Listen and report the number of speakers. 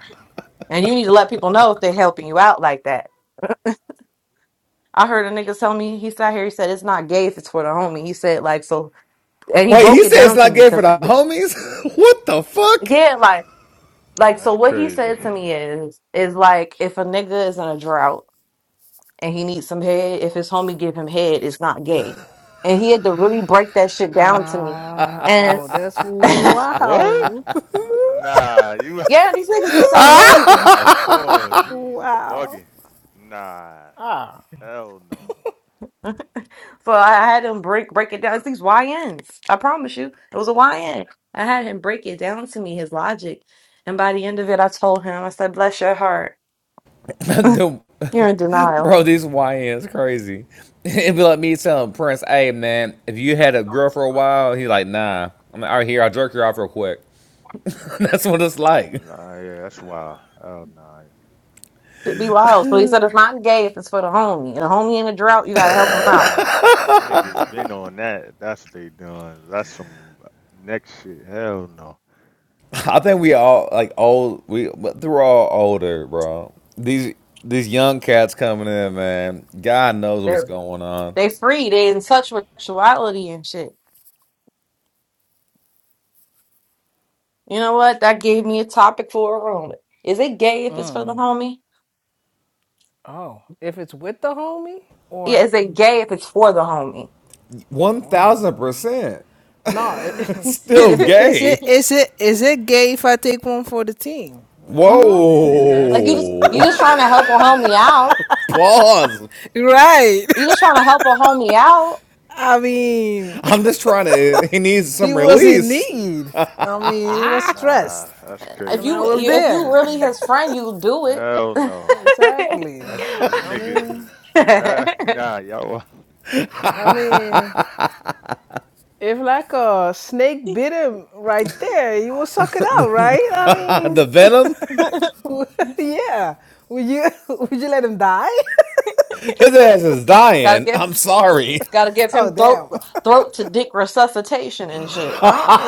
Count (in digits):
4